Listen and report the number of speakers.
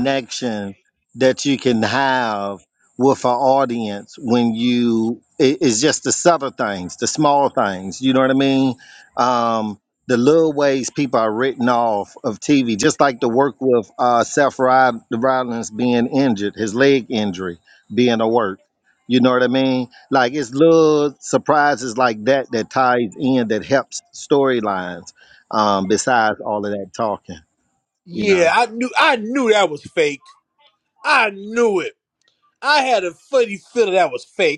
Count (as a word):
two